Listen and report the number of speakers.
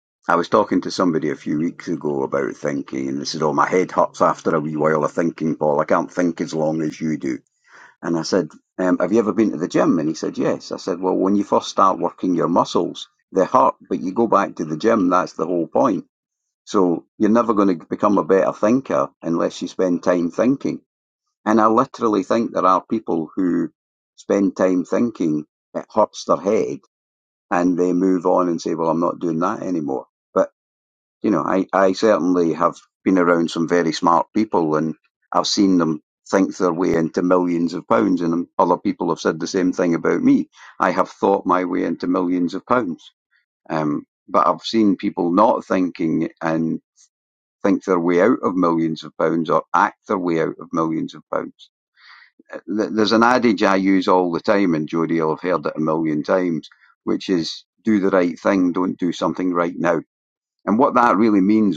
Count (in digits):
1